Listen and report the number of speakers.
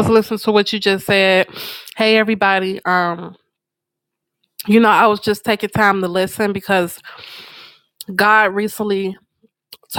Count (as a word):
one